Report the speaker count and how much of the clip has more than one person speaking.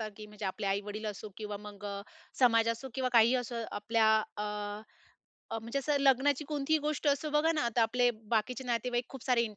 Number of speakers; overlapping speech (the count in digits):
1, no overlap